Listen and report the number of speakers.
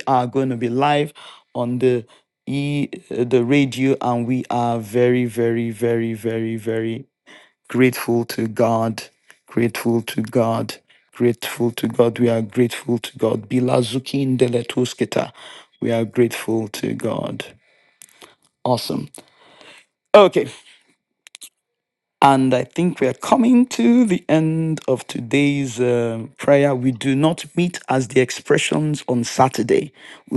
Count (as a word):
one